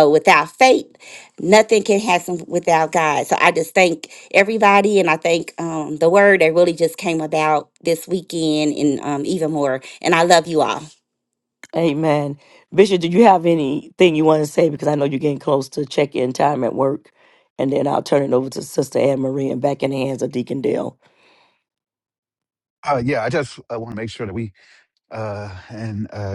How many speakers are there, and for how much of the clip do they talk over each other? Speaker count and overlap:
3, no overlap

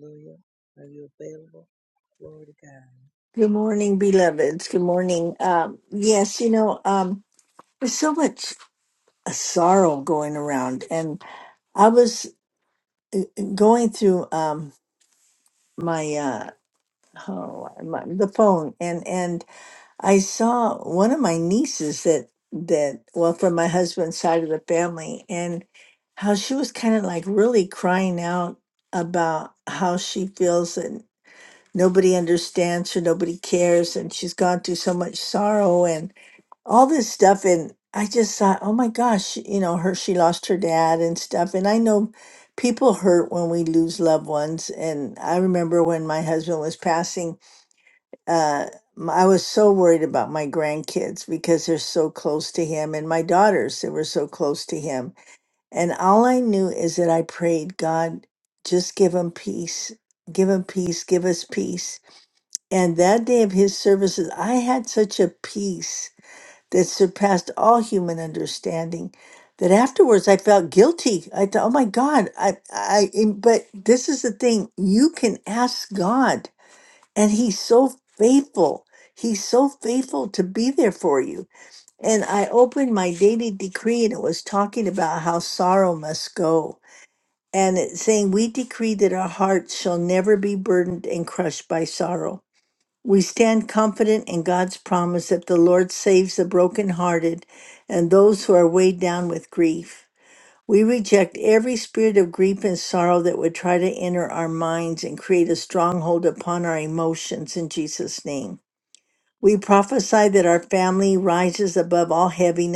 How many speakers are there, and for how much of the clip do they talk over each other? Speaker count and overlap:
2, no overlap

